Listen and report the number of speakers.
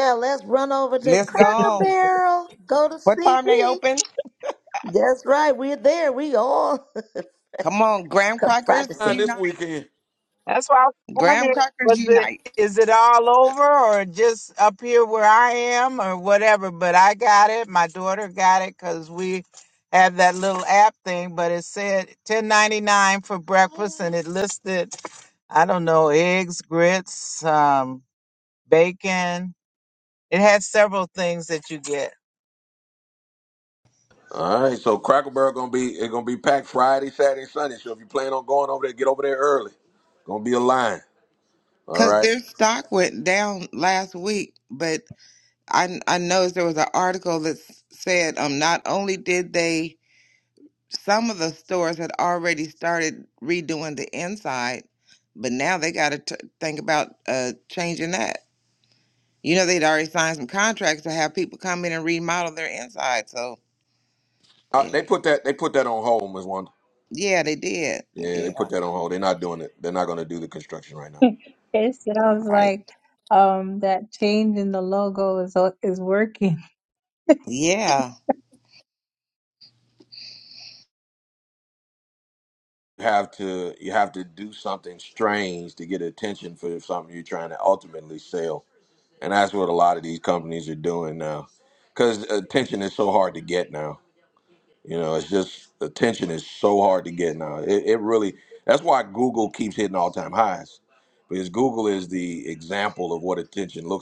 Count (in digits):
5